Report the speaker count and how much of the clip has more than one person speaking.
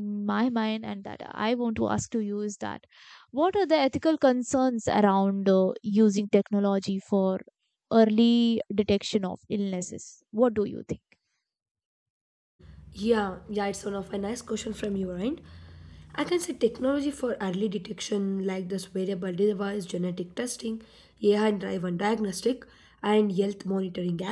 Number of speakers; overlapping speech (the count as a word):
two, no overlap